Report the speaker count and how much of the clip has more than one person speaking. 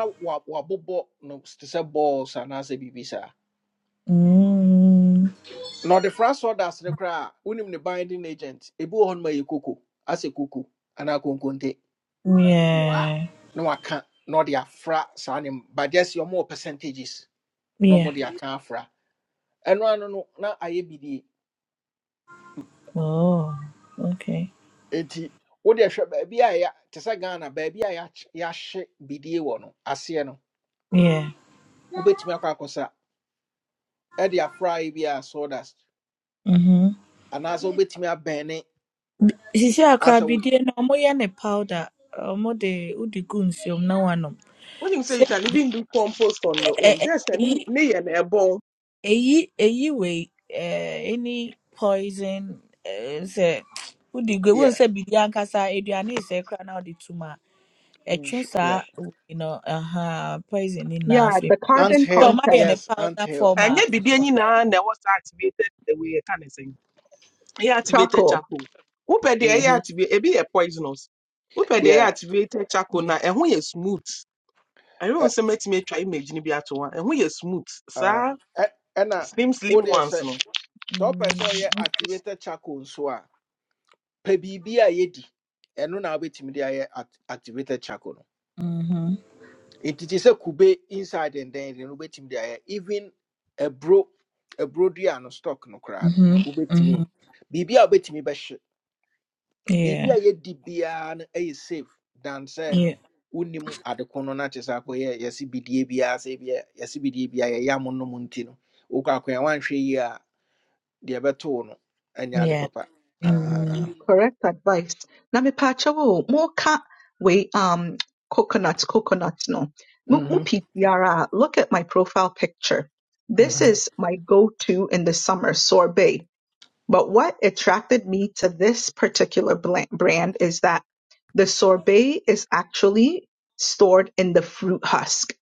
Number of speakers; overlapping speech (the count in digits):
4, about 9%